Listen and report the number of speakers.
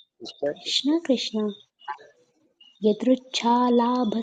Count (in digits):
1